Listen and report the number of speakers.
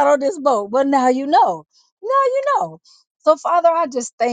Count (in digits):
1